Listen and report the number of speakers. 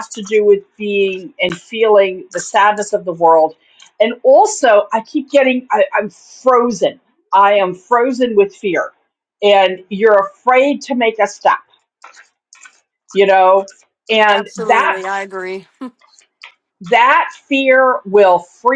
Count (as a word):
two